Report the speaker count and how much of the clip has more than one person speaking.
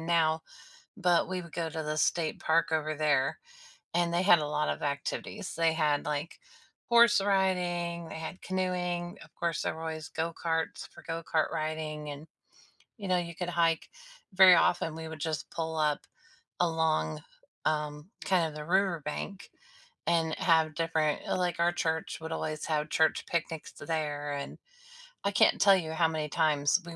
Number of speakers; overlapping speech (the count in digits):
1, no overlap